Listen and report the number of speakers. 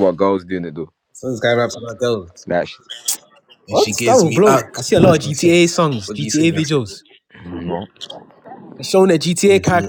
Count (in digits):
3